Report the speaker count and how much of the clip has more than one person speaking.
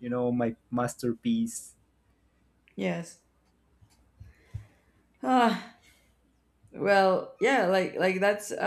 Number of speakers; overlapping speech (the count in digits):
2, no overlap